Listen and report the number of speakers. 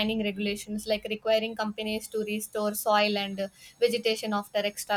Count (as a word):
one